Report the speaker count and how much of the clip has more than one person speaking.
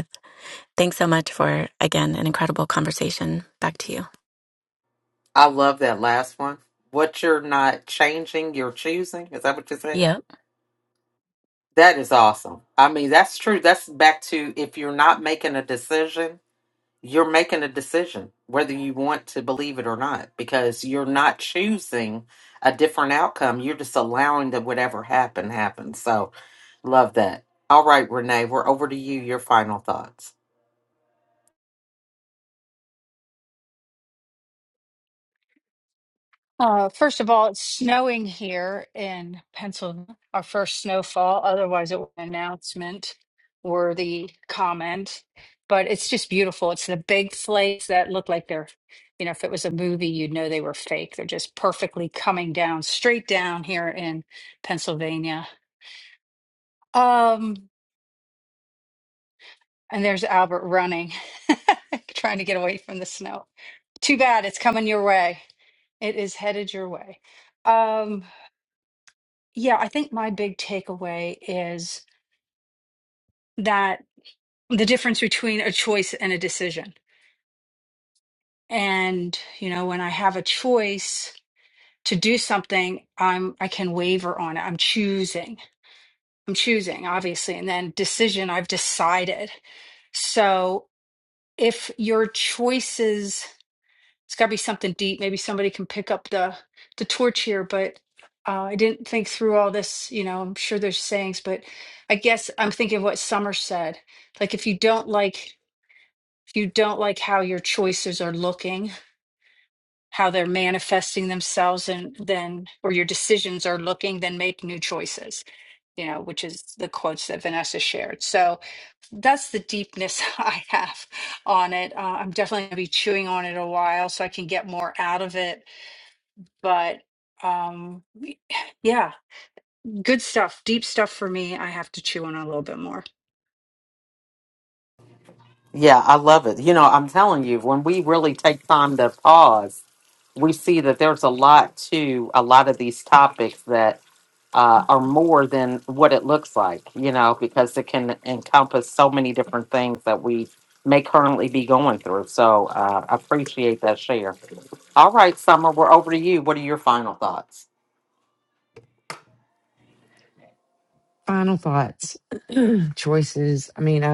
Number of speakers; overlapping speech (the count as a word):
four, under 1%